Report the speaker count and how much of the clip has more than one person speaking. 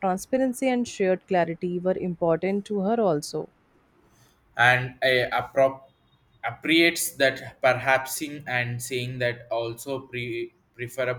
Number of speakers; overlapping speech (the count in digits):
2, no overlap